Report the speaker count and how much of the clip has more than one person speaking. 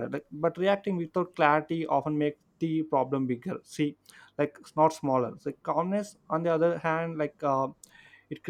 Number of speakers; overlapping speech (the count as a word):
one, no overlap